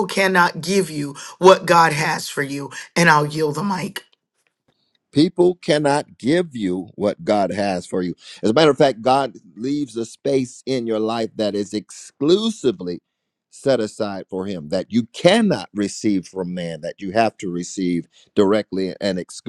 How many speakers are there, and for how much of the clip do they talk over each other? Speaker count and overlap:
2, no overlap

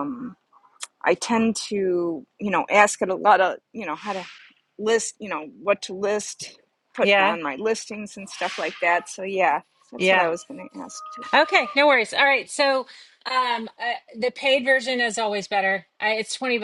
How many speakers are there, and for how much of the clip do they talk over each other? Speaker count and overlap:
2, about 4%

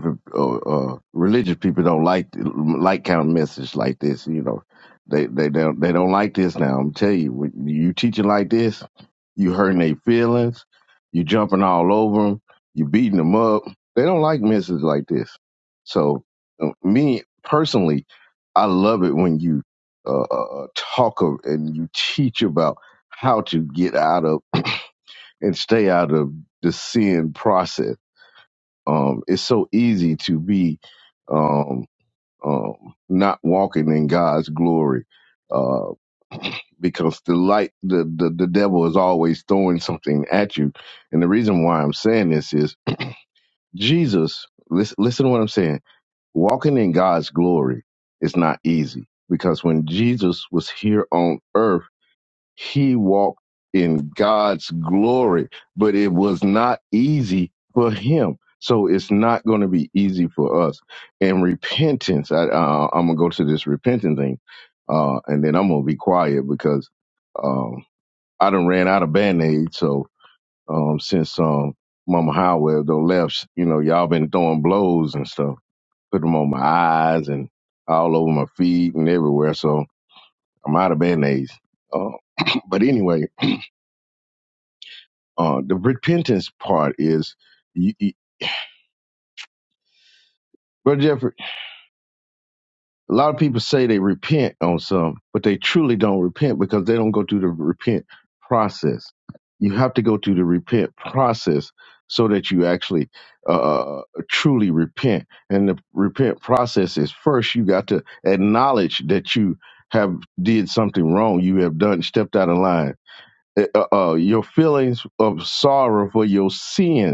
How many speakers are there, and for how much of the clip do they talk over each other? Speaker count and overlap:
1, no overlap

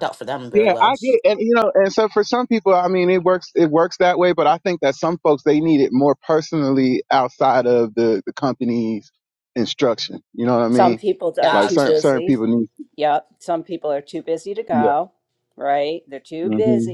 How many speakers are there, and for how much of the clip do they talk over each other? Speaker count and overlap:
3, about 14%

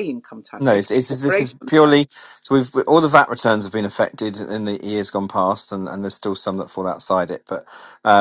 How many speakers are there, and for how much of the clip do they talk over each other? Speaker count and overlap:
2, about 16%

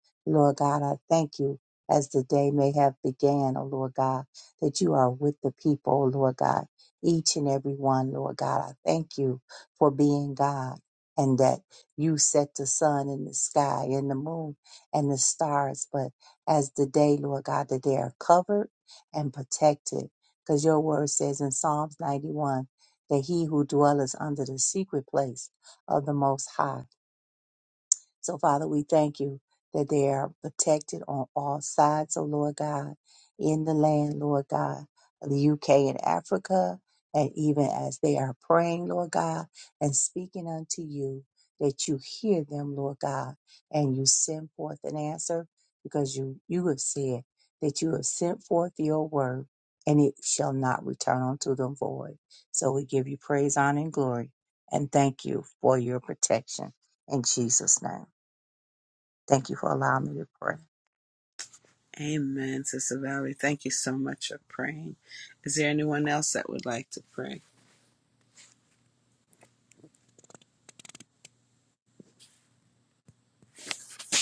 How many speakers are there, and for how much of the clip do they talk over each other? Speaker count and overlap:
2, no overlap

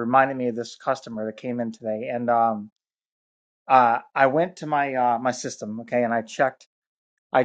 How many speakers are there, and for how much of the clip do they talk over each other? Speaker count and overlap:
1, no overlap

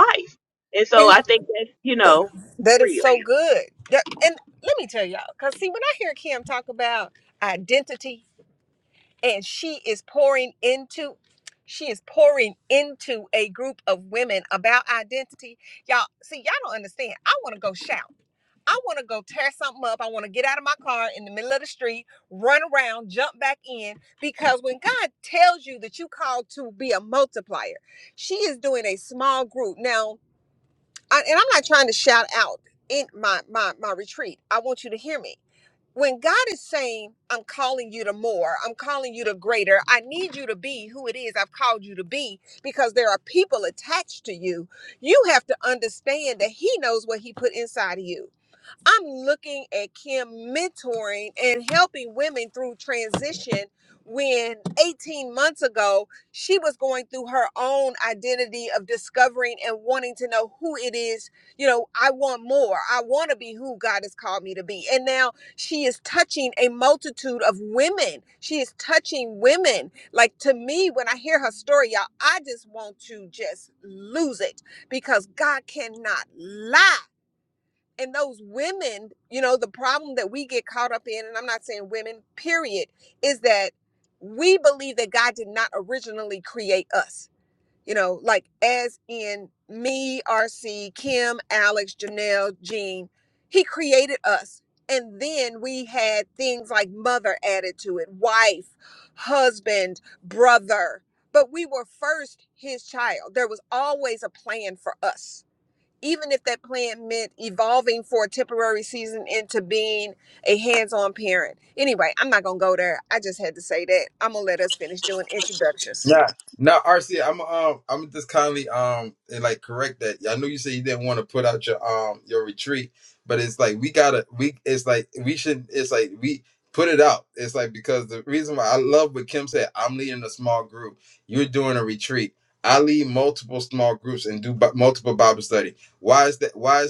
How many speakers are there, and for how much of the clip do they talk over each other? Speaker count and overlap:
3, under 1%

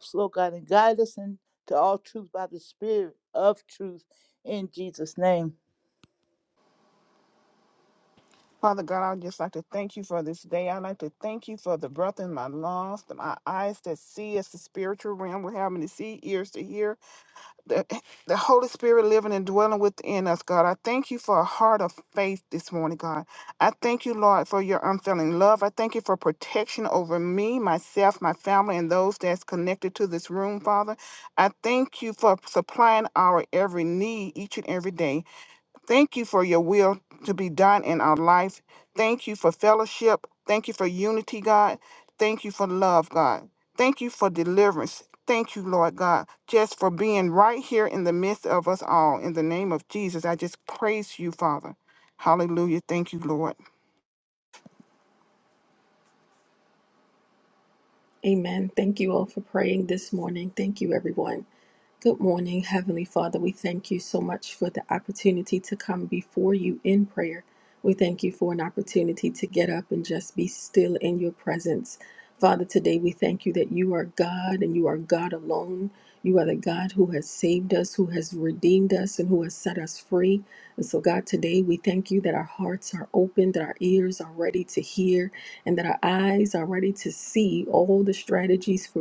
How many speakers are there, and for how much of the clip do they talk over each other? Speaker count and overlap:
3, no overlap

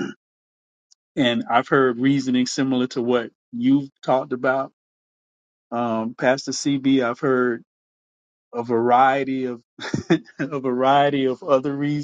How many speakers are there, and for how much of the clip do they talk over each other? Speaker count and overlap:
1, no overlap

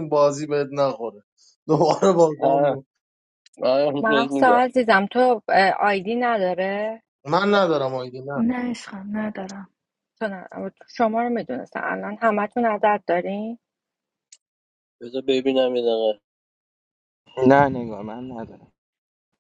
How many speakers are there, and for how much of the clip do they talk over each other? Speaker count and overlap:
5, about 5%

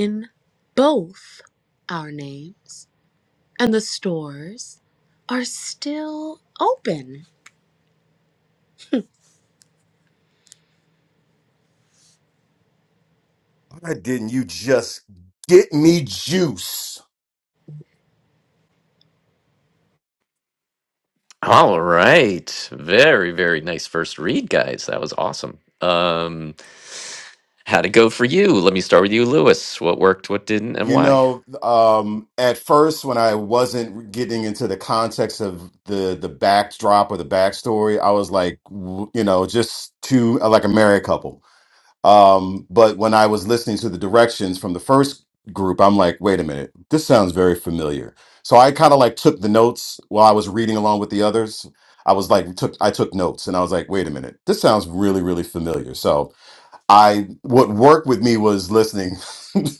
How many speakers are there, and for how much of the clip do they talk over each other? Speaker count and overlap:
3, about 1%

